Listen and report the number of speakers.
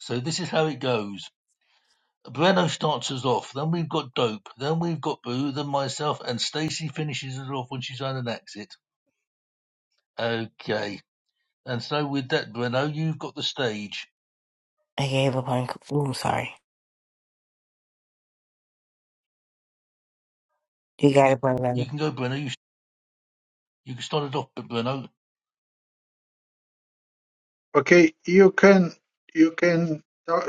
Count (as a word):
three